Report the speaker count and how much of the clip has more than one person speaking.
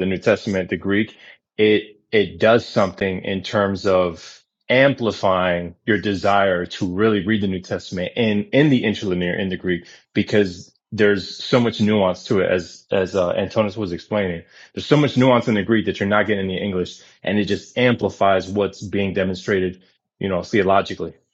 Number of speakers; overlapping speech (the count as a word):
one, no overlap